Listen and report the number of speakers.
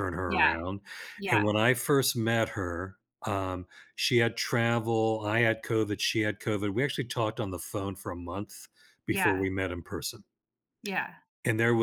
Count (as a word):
two